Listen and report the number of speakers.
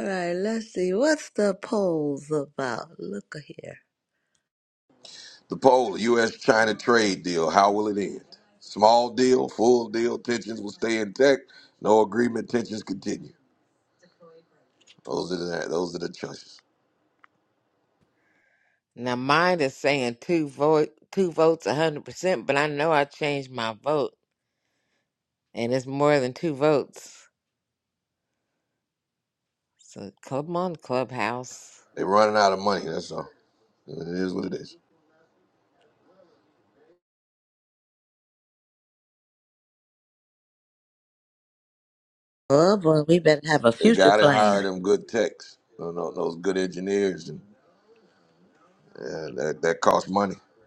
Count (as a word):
three